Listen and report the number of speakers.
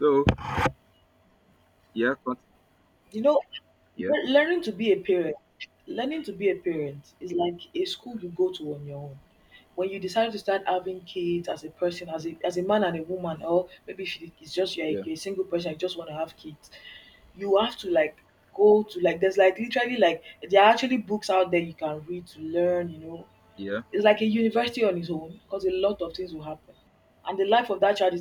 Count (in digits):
2